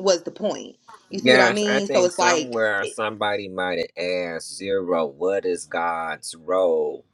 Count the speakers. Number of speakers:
2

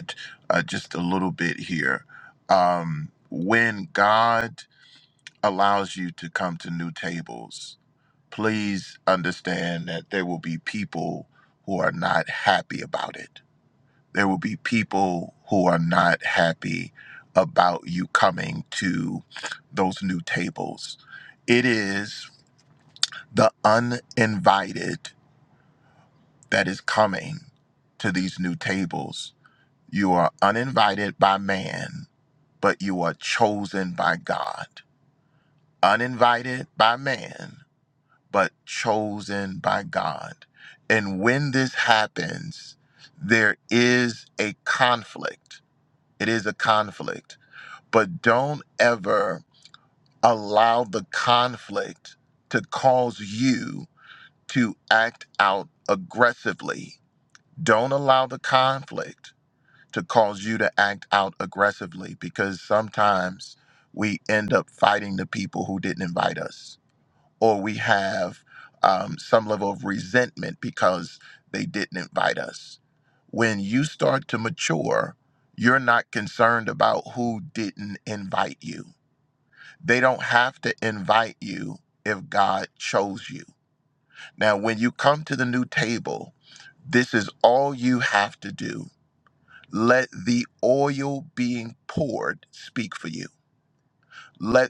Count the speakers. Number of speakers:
1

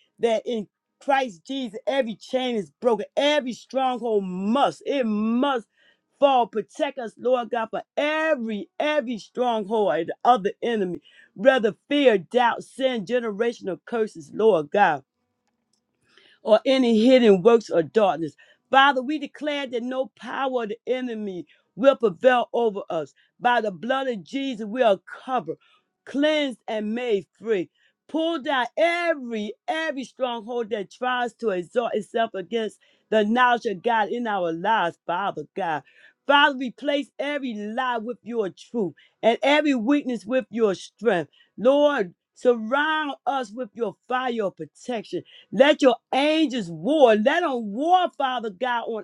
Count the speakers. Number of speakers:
1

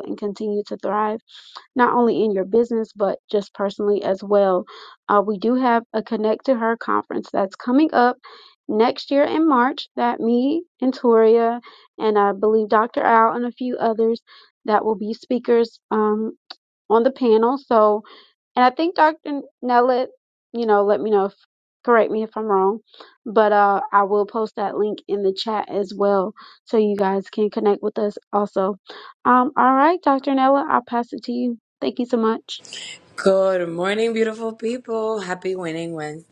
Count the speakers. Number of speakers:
2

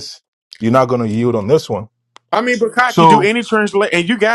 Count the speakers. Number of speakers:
2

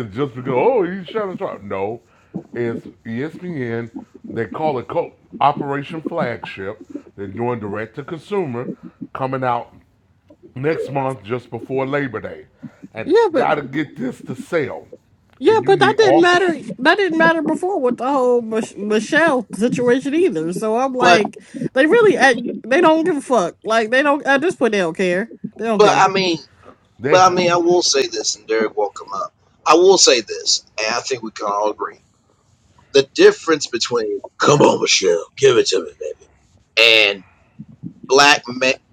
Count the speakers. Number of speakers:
3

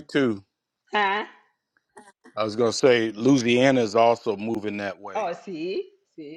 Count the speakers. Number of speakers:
2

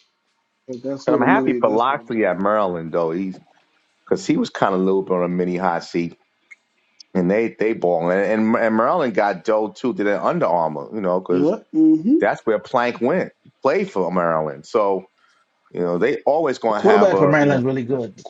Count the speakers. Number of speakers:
3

